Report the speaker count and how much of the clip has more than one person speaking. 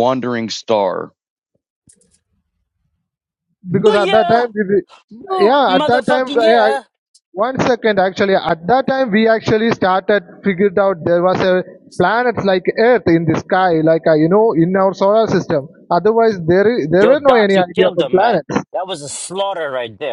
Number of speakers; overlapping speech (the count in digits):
3, about 17%